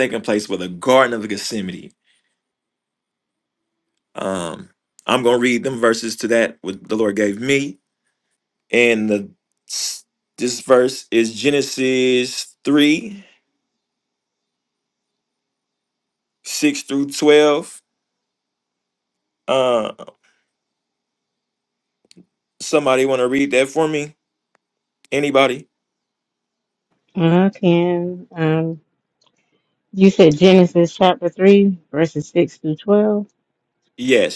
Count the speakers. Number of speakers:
2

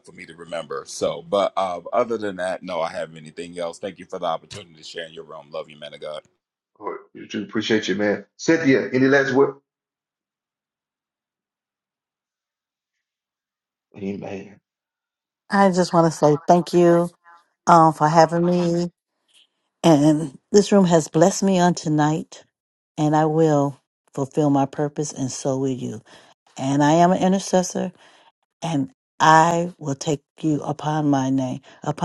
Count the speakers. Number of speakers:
3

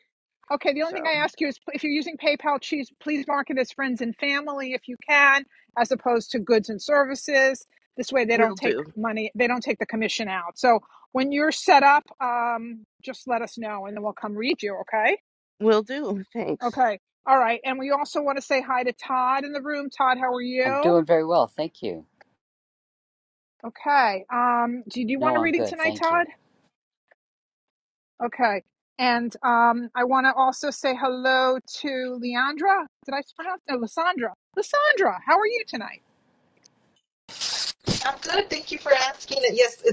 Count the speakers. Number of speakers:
4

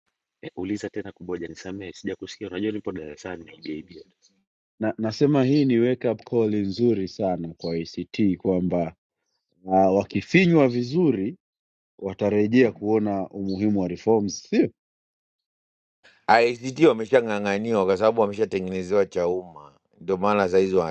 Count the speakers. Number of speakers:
3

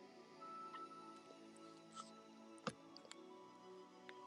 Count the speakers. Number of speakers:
0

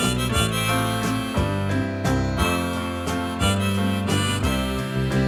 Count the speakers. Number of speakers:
0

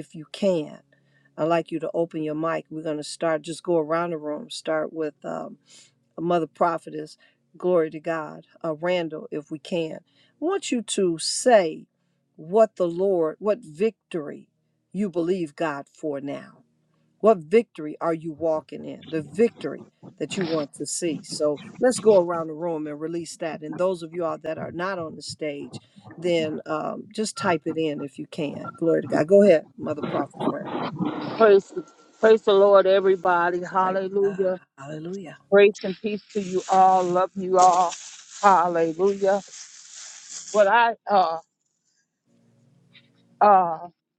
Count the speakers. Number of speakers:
2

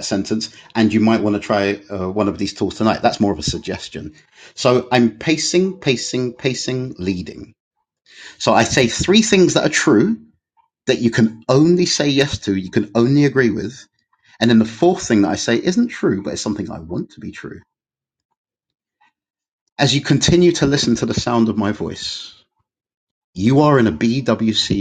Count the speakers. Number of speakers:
1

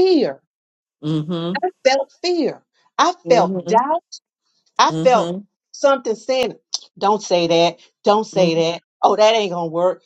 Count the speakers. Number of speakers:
2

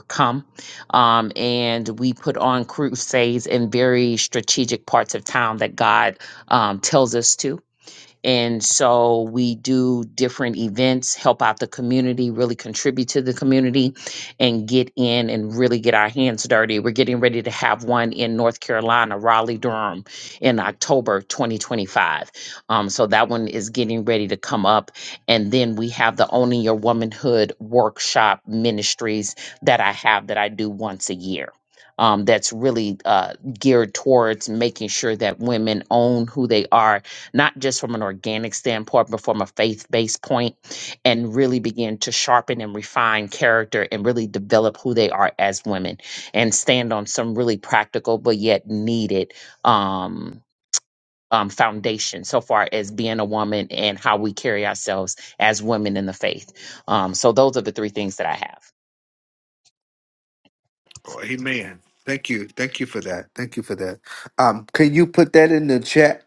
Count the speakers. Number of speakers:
2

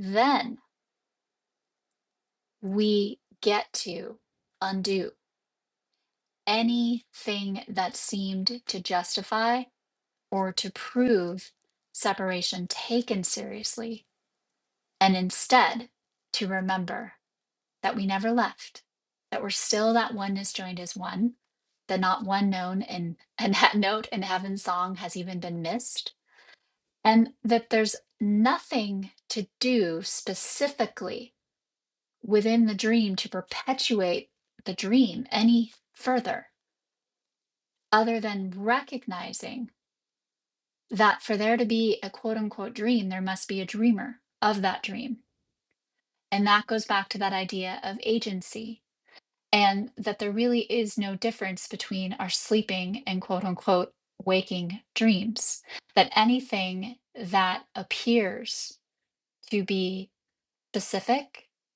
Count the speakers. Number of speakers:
1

